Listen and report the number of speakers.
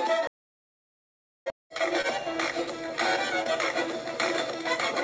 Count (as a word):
zero